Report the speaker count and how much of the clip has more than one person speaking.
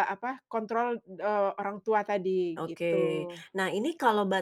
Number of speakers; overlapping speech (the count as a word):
two, about 8%